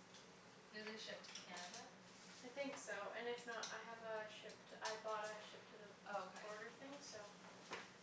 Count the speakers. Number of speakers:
2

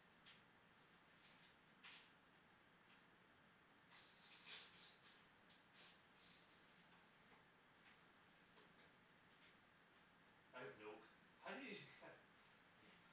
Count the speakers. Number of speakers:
1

